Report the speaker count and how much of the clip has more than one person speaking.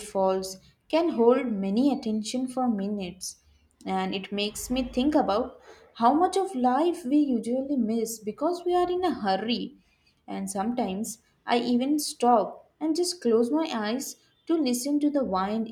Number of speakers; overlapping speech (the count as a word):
one, no overlap